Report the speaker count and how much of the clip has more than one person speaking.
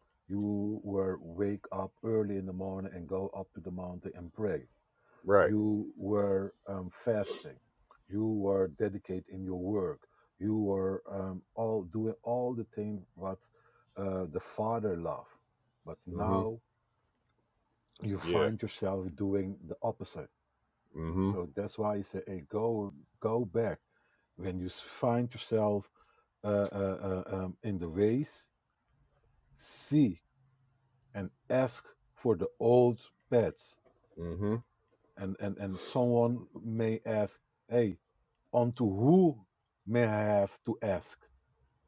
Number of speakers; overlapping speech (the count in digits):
2, about 2%